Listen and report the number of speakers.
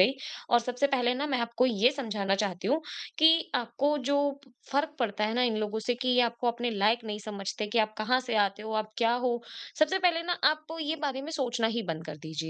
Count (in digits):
1